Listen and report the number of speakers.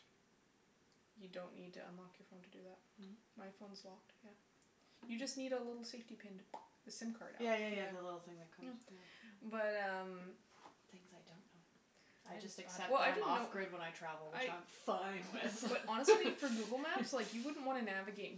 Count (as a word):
two